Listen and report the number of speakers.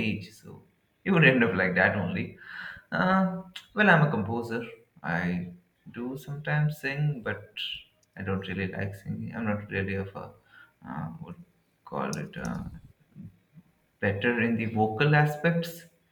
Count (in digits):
1